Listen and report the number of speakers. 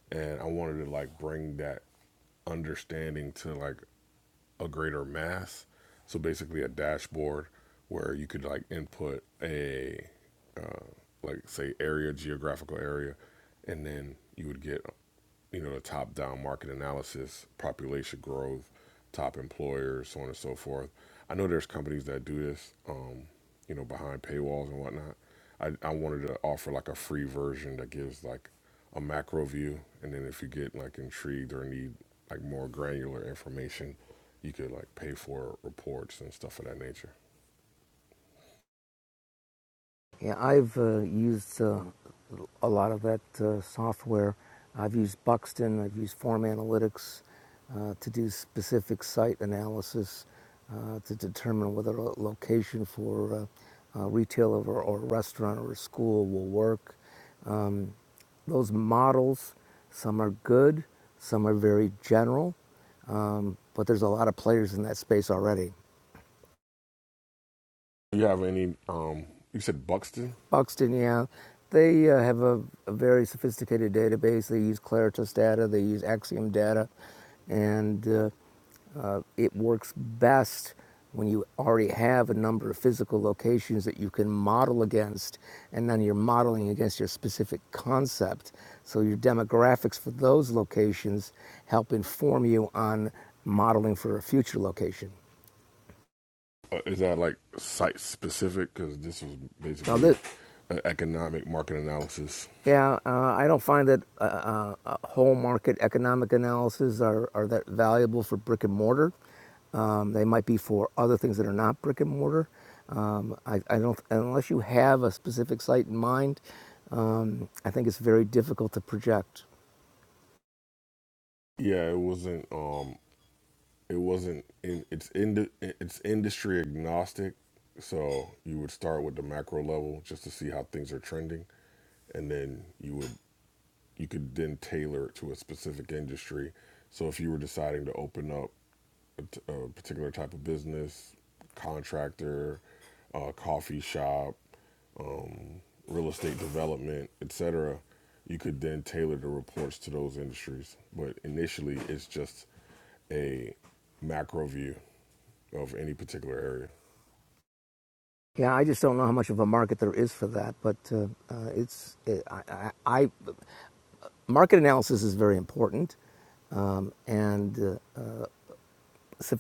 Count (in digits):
2